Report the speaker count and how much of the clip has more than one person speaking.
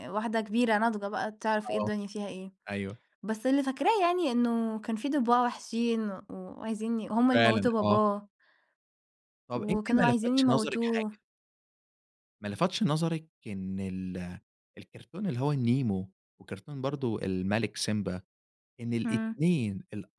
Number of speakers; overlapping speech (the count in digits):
2, about 14%